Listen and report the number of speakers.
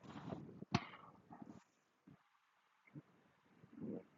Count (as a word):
zero